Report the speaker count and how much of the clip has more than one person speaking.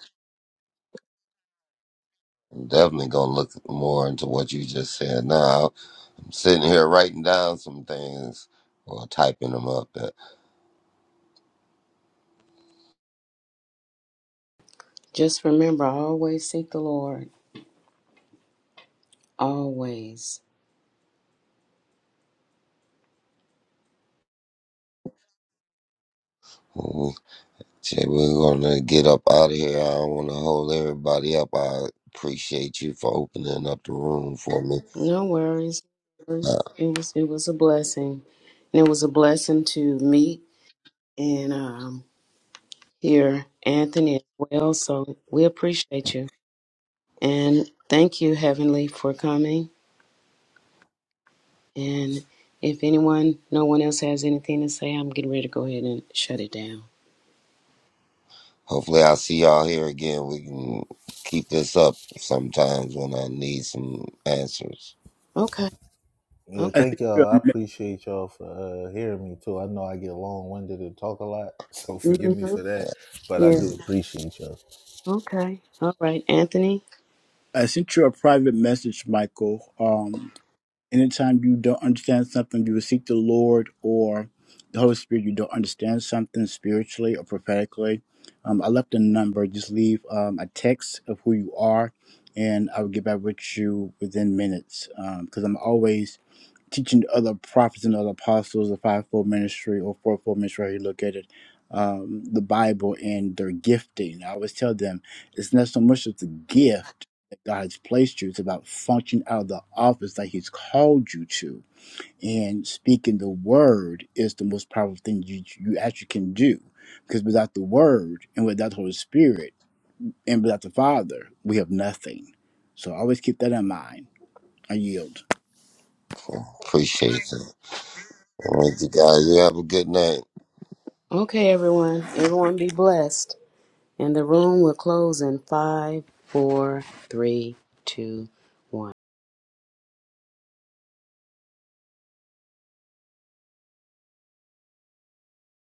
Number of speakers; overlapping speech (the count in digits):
4, about 1%